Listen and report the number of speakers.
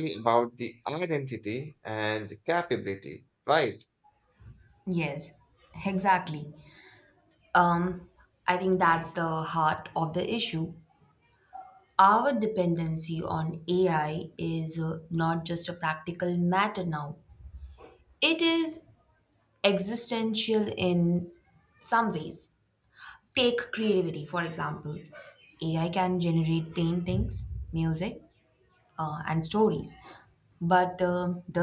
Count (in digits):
2